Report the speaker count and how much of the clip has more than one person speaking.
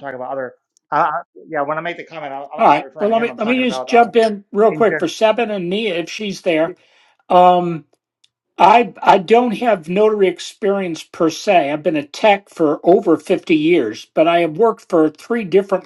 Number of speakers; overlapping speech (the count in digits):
2, about 12%